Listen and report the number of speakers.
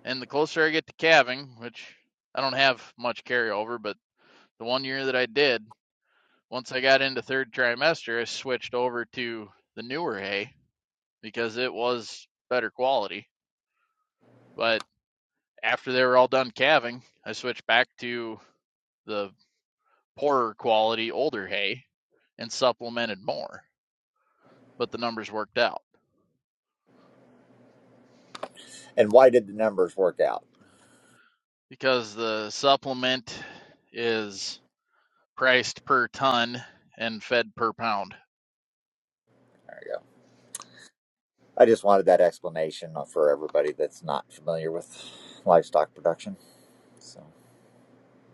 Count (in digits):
2